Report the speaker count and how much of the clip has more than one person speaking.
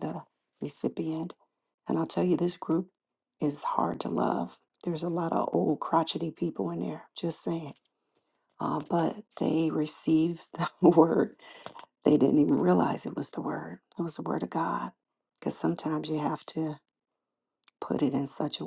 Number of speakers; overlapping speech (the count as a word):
one, no overlap